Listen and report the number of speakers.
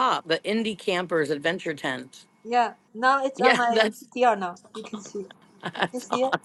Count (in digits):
2